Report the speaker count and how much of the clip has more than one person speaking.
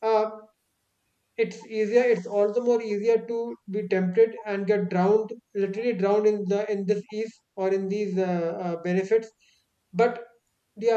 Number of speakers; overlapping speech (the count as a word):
one, no overlap